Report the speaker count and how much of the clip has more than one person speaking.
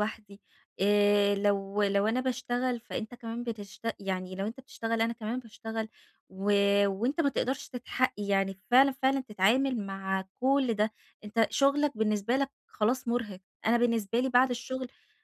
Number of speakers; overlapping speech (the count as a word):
one, no overlap